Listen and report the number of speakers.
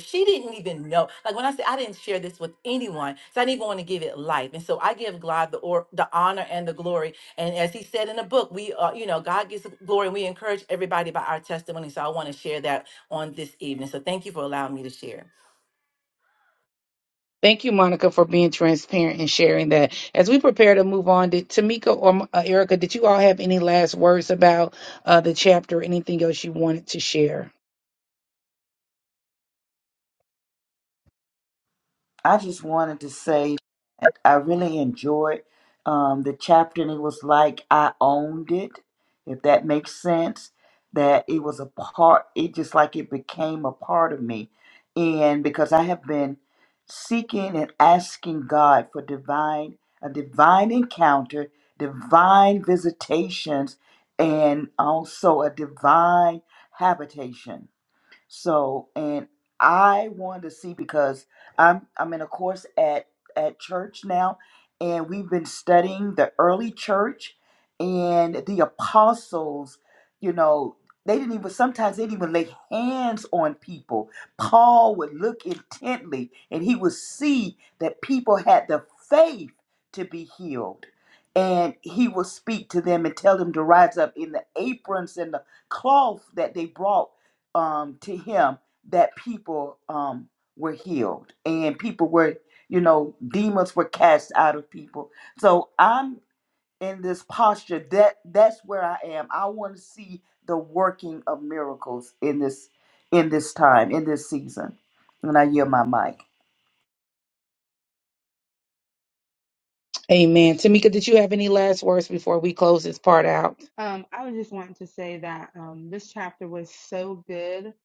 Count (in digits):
4